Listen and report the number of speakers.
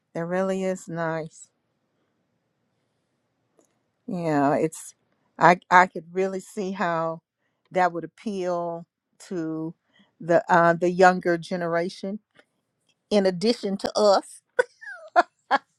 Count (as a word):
one